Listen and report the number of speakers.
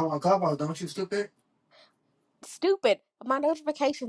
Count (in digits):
2